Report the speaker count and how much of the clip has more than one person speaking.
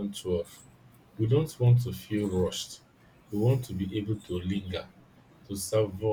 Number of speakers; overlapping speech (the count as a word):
one, no overlap